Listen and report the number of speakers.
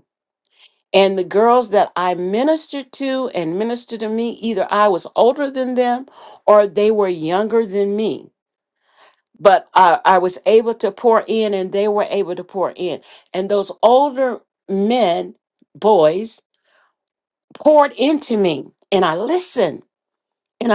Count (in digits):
1